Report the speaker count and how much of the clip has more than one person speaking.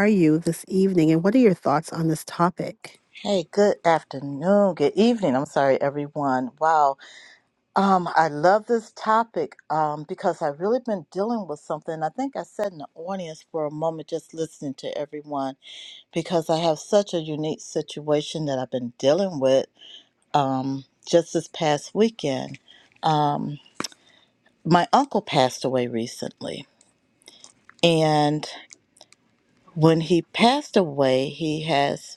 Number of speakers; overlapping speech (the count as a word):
two, no overlap